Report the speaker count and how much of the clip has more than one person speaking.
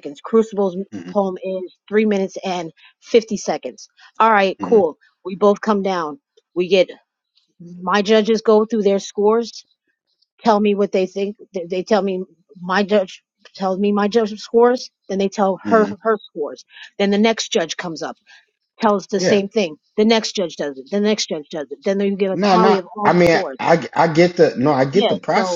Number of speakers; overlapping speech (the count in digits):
2, about 10%